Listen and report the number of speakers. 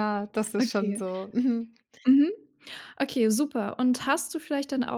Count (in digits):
2